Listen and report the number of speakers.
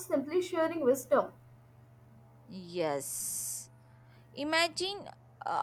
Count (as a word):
two